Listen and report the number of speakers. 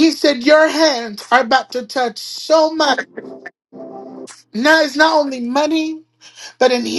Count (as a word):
one